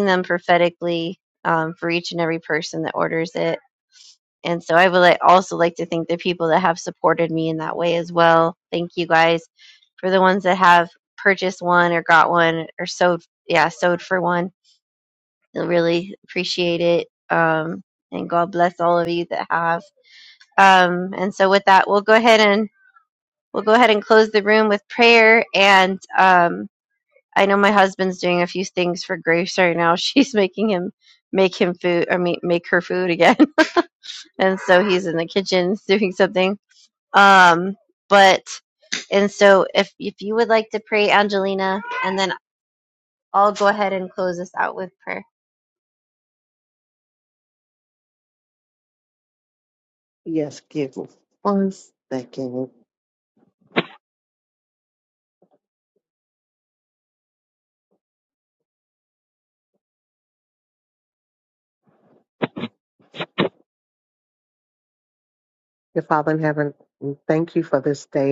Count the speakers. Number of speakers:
two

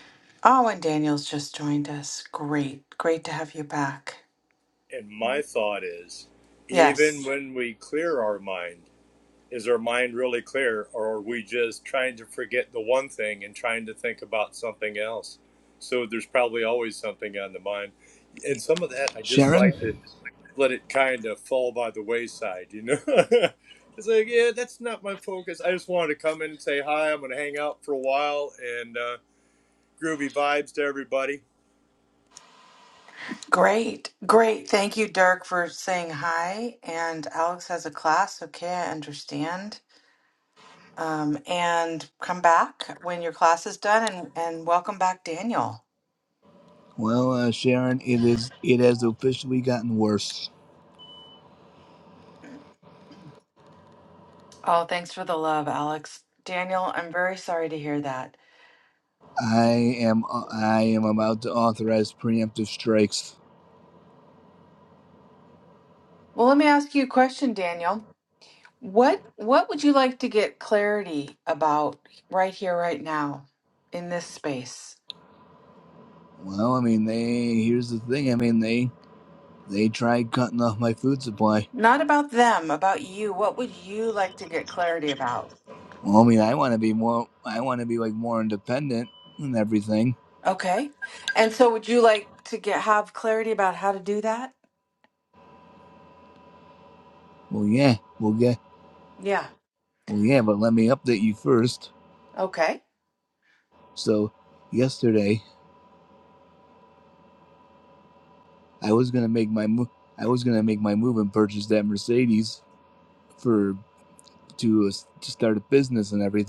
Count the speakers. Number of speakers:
three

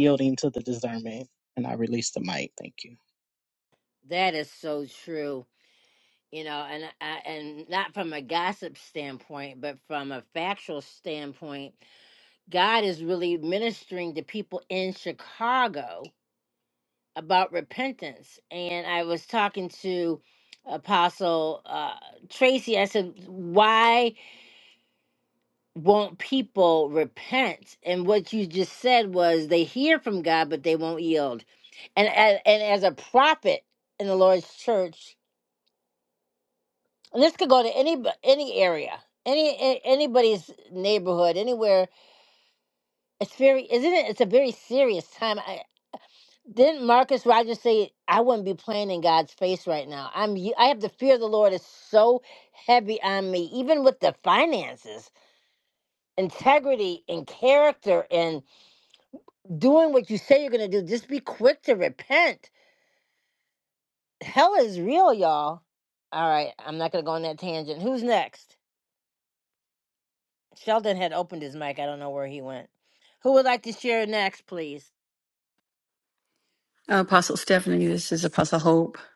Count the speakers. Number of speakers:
three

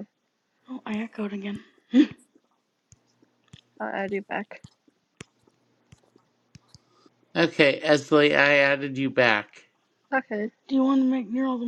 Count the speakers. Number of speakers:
three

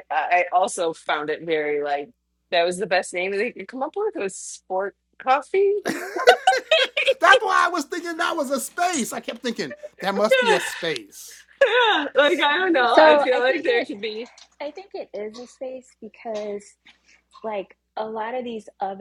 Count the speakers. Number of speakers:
three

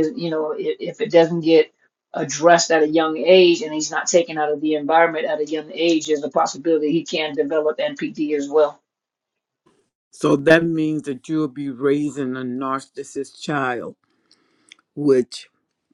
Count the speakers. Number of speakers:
two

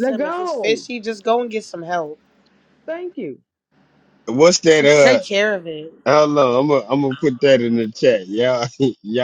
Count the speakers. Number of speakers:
three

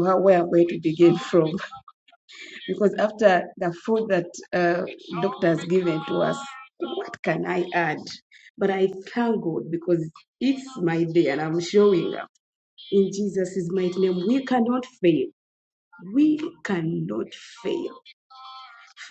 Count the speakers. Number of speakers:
one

